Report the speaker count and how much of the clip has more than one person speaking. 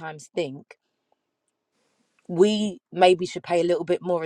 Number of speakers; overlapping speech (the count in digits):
1, no overlap